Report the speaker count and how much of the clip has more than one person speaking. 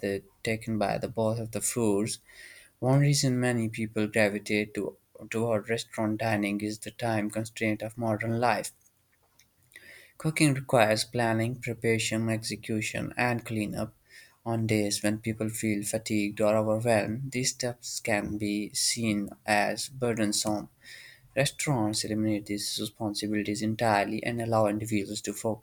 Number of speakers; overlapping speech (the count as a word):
one, no overlap